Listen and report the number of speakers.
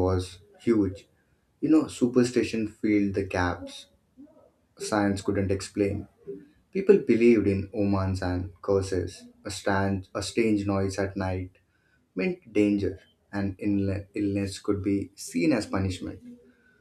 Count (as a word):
one